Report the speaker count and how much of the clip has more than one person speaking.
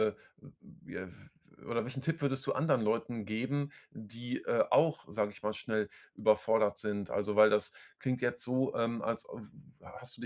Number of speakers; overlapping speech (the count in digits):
1, no overlap